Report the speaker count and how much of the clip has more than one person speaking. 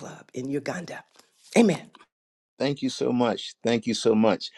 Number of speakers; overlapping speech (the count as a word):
two, no overlap